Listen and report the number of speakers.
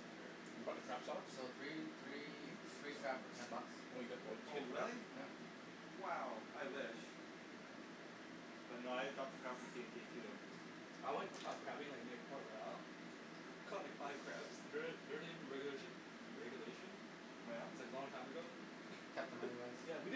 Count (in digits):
4